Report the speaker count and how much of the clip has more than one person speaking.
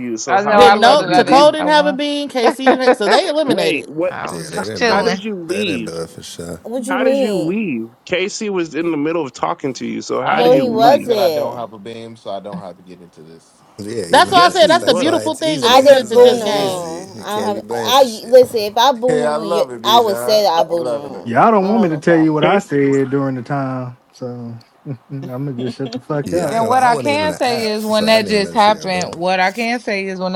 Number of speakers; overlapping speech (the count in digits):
7, about 54%